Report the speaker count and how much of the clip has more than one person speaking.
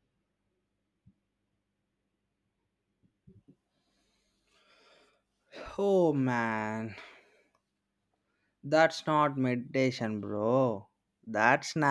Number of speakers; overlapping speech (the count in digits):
1, no overlap